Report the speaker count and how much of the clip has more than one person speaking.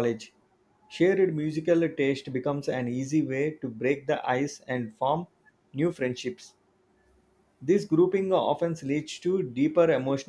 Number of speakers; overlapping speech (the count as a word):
one, no overlap